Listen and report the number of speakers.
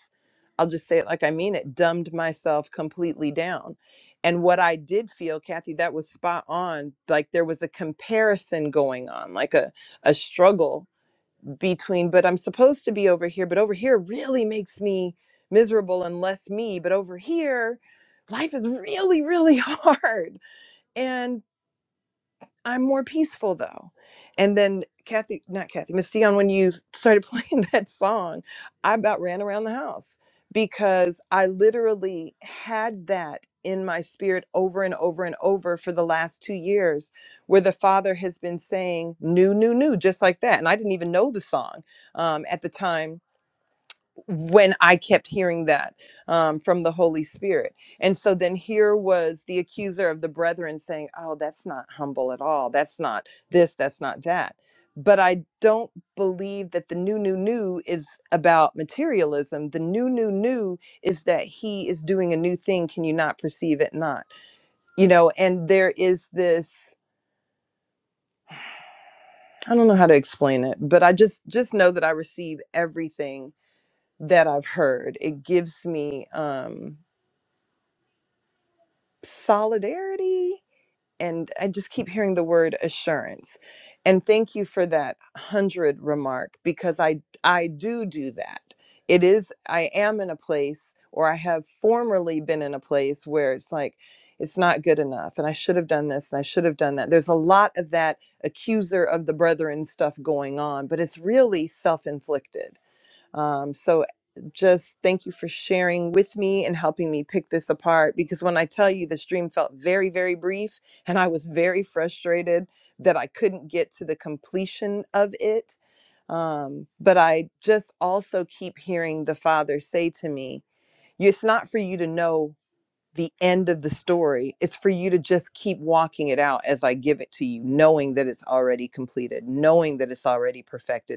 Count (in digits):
1